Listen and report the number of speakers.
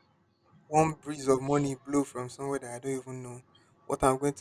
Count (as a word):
one